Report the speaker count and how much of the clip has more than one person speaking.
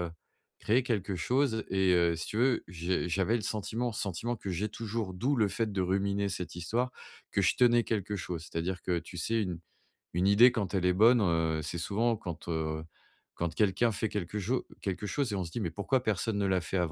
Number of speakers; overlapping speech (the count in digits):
1, no overlap